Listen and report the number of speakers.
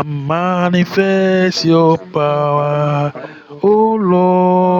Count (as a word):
two